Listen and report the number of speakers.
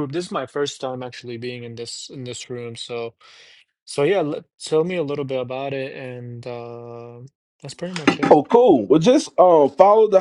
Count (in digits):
2